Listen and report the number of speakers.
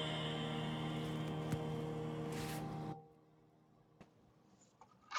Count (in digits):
0